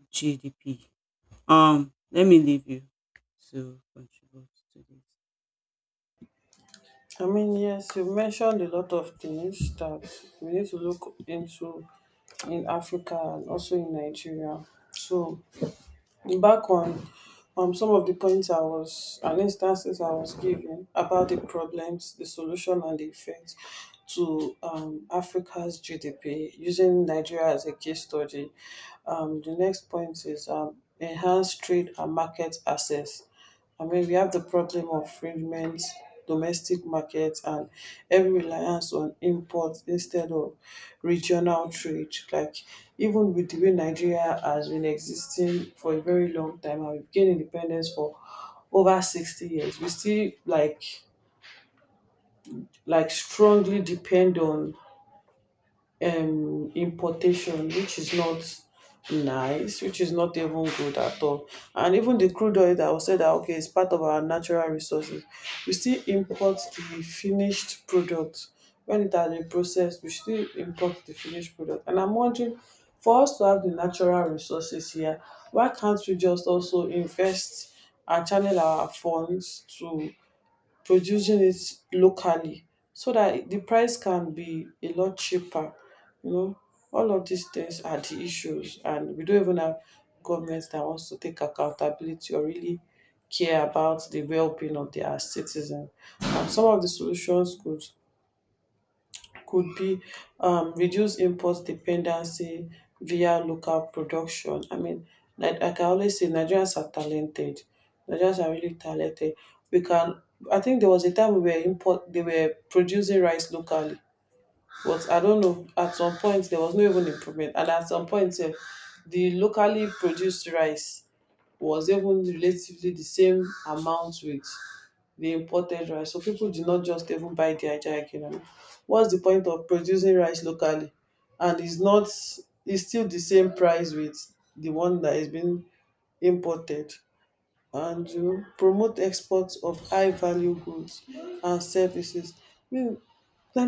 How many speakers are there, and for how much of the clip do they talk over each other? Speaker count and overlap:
2, no overlap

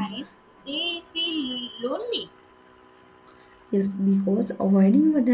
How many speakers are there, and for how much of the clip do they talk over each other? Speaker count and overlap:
2, about 2%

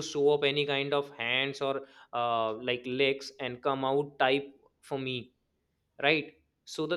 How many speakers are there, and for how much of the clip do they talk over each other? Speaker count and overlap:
1, no overlap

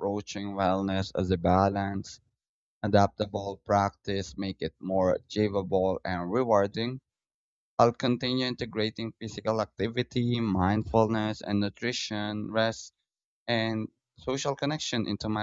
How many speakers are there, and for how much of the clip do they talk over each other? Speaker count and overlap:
1, no overlap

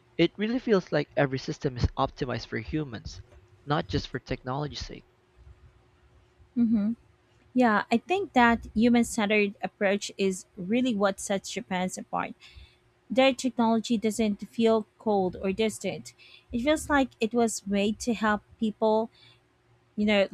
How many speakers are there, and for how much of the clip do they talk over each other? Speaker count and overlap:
2, no overlap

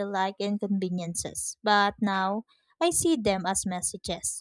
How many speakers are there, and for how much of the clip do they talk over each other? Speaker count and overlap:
1, no overlap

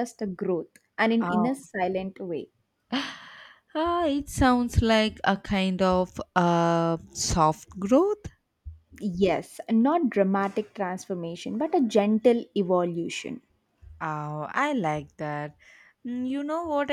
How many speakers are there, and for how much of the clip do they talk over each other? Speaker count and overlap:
2, about 2%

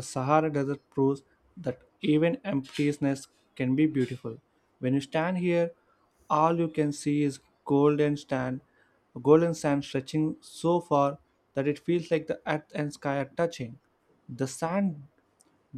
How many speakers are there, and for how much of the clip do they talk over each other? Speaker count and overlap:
1, no overlap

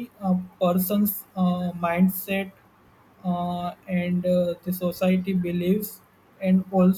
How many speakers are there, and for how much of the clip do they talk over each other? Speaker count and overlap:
1, no overlap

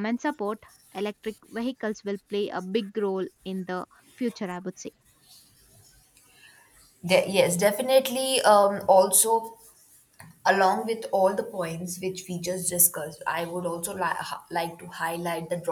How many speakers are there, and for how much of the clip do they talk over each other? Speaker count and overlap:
2, no overlap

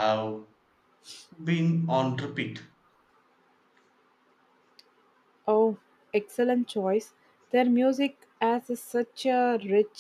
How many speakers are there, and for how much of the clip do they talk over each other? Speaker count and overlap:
2, no overlap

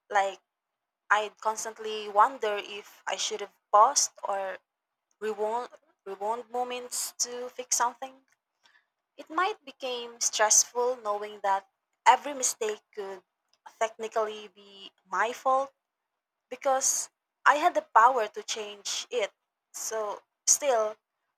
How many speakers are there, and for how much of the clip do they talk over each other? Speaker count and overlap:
1, no overlap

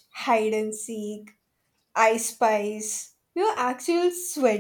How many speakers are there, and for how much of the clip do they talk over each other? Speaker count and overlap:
1, no overlap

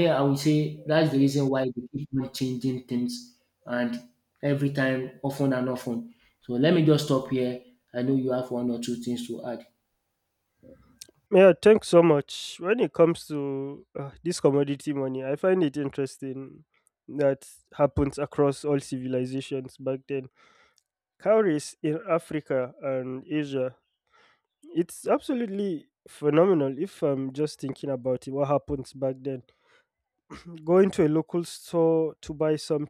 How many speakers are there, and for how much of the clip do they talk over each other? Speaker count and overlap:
2, no overlap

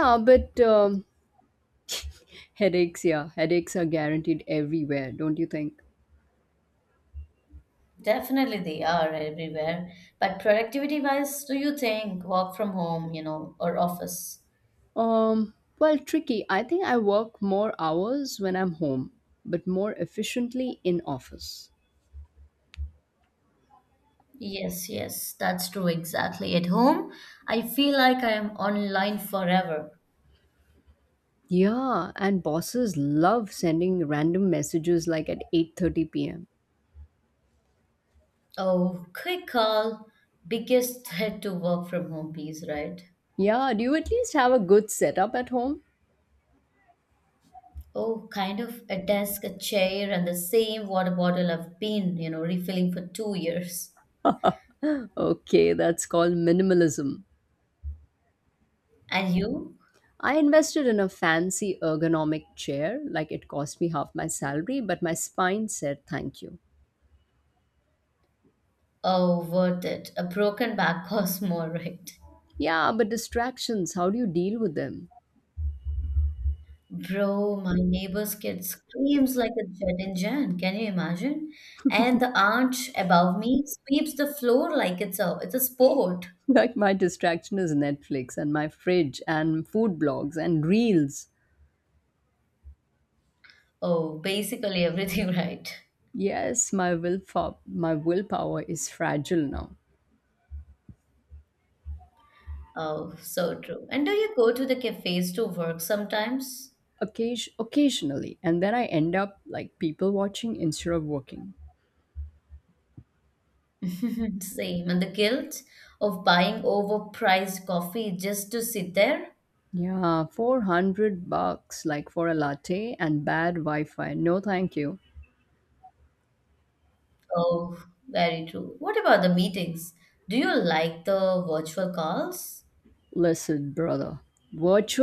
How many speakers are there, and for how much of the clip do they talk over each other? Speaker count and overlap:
2, no overlap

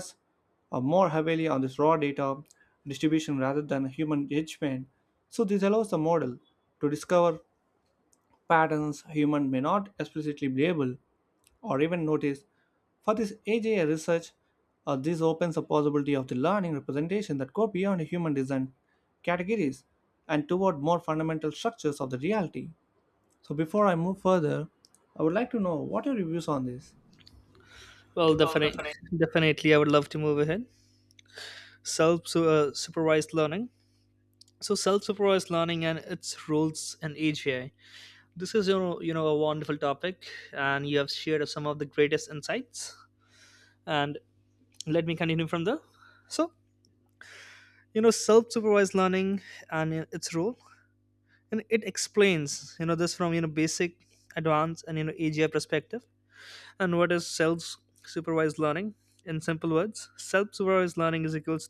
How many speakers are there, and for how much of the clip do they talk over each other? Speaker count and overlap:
2, no overlap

